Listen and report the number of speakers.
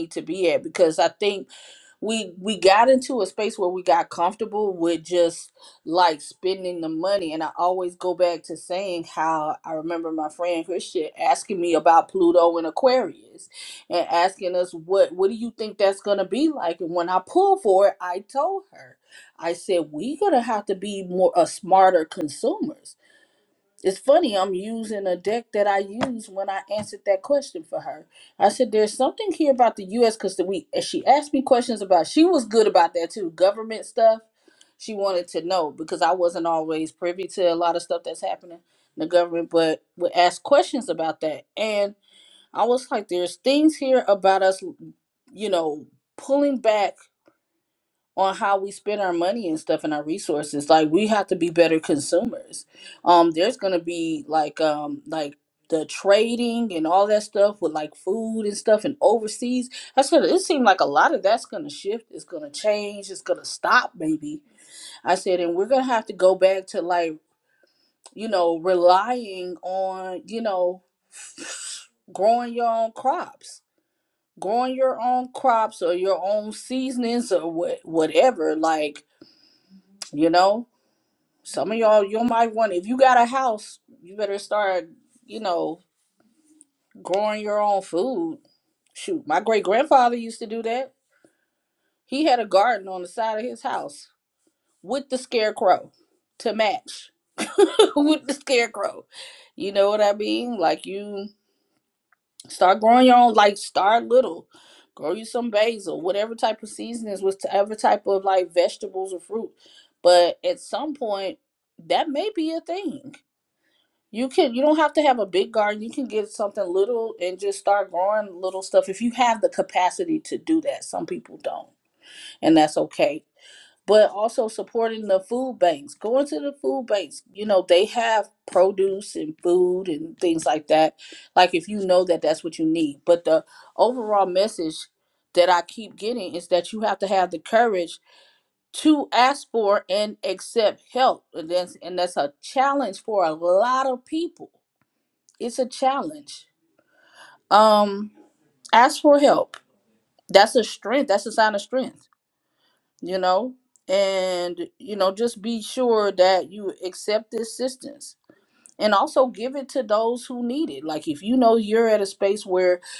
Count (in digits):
1